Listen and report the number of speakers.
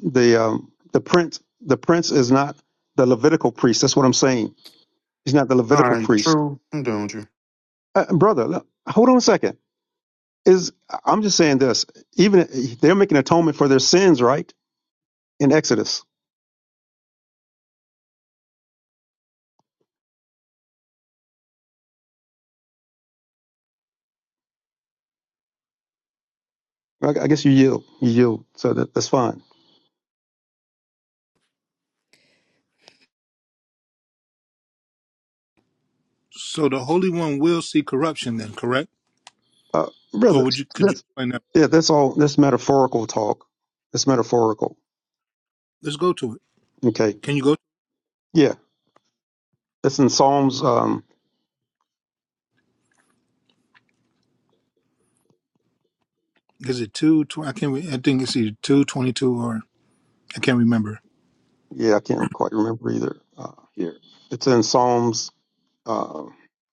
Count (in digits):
3